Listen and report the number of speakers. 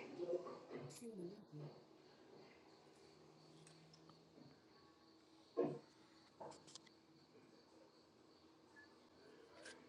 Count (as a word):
zero